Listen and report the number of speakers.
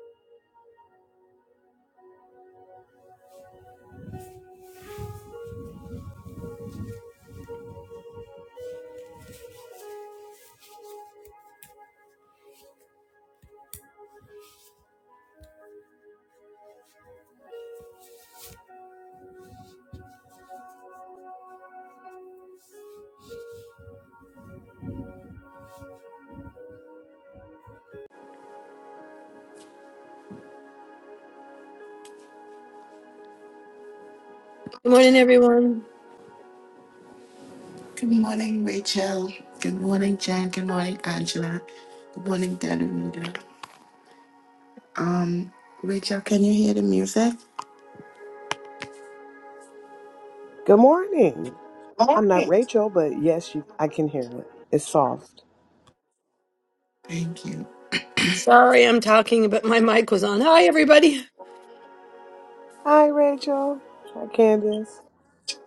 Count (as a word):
three